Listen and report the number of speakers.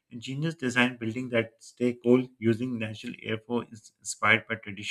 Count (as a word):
one